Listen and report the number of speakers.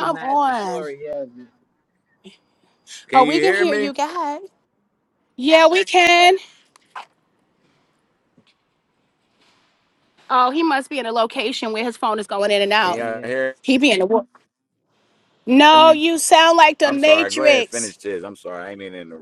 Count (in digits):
3